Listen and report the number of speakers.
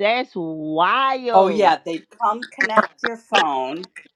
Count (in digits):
2